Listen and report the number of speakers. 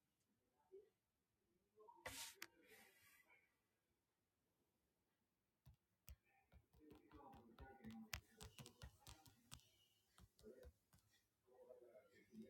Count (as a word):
zero